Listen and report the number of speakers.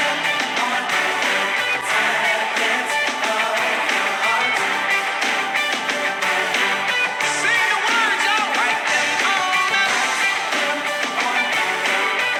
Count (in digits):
0